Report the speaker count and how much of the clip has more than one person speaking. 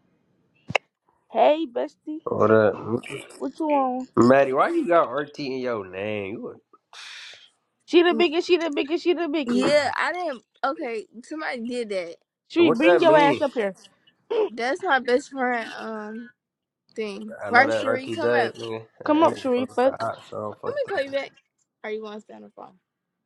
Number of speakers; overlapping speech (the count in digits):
3, about 16%